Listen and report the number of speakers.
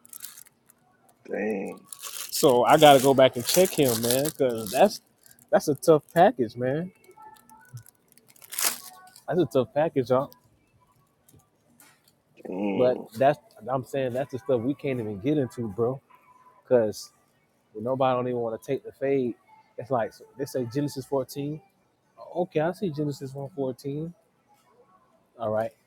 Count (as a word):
two